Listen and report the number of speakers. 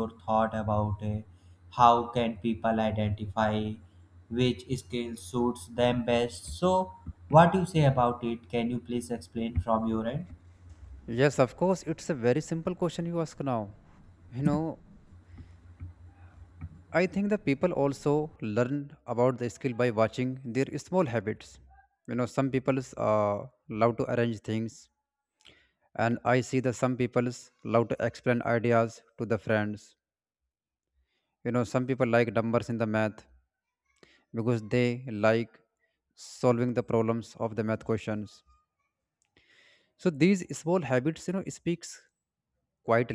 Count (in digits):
2